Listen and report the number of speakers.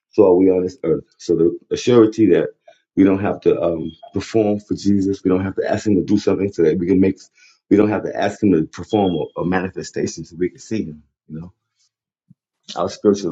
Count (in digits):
1